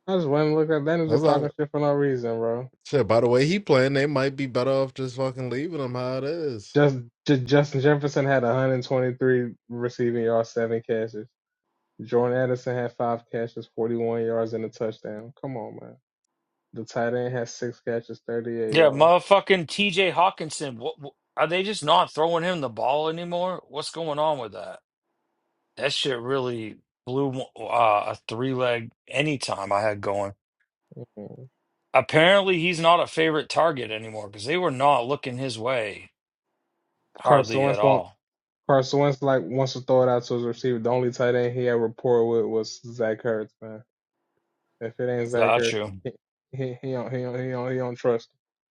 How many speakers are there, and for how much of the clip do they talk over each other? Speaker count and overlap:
three, about 4%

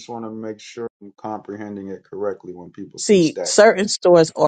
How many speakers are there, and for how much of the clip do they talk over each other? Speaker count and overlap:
two, about 10%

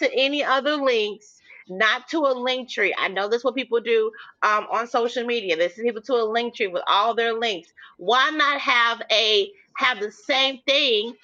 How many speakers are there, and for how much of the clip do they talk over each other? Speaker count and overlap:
one, no overlap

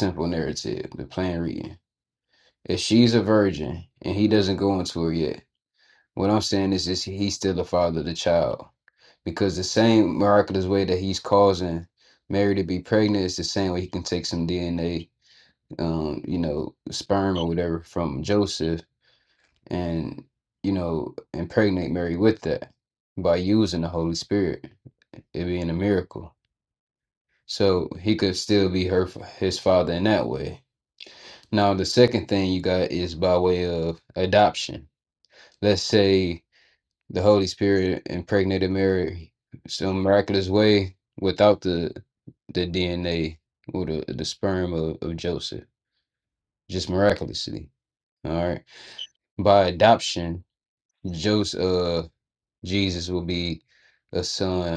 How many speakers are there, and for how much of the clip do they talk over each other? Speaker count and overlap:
one, no overlap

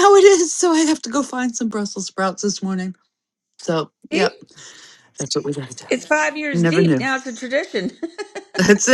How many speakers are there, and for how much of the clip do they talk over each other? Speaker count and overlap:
two, about 9%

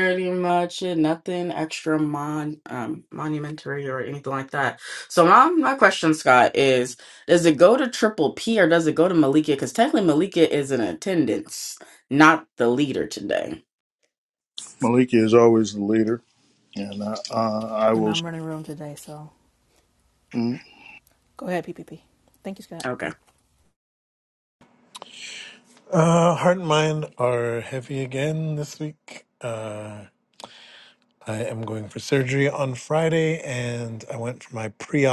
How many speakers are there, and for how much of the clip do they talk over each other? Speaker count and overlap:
four, about 1%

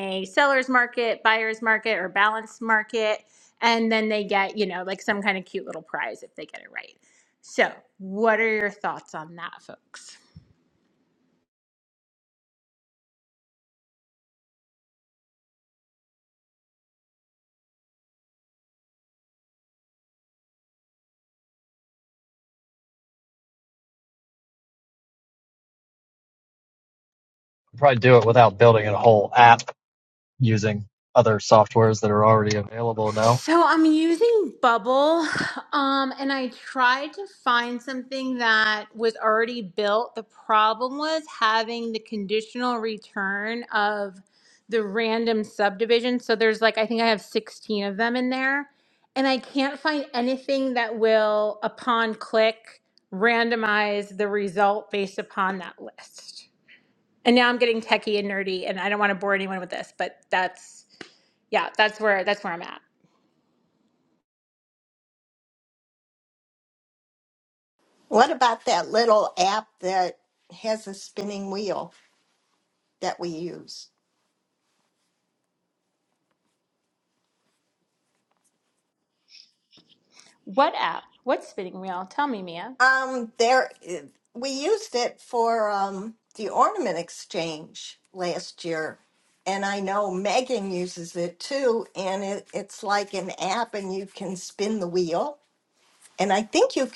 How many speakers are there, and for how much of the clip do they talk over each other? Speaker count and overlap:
three, under 1%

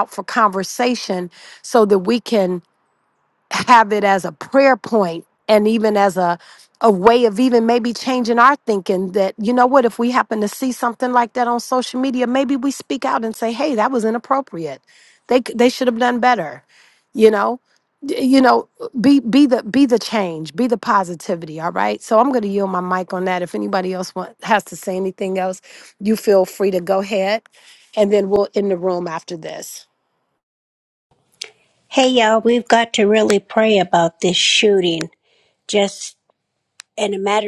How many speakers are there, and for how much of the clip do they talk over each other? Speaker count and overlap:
two, no overlap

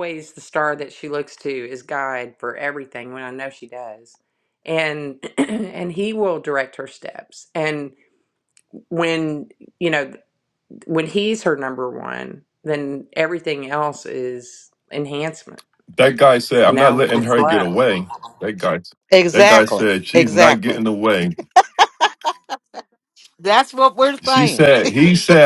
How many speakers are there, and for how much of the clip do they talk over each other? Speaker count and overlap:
three, about 12%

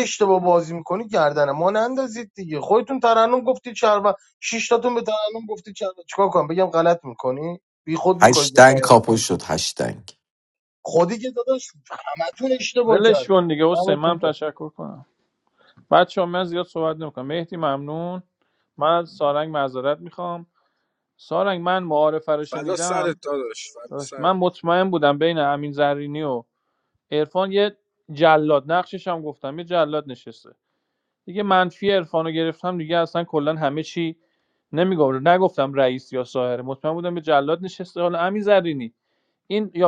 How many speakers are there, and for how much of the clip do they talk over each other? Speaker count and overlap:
four, about 7%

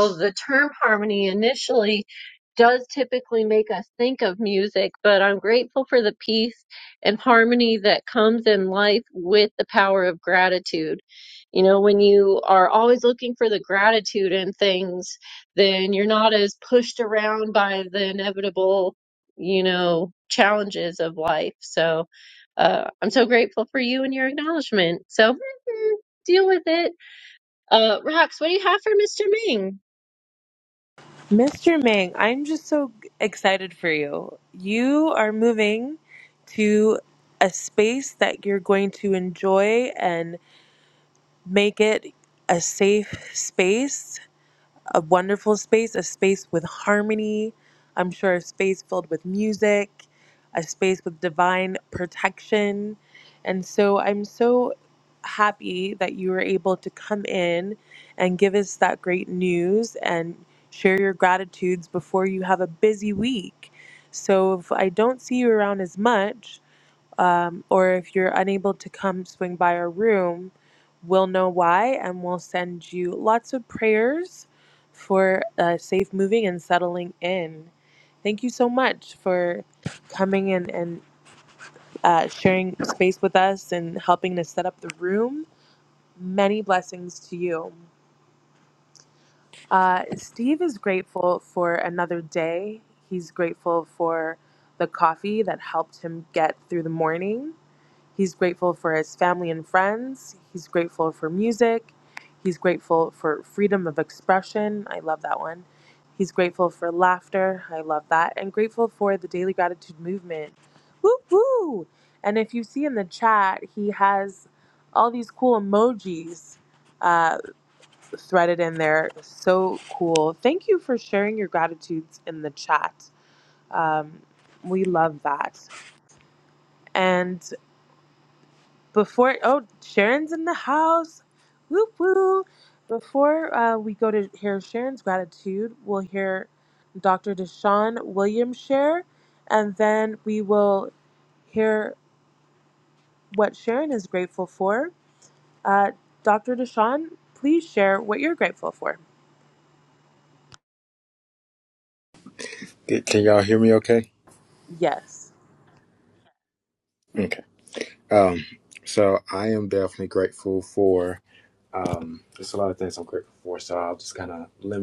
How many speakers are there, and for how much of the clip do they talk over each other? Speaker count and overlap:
three, no overlap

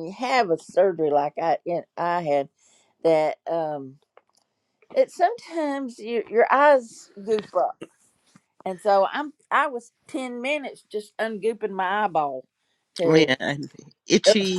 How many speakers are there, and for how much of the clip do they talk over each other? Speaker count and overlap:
two, about 3%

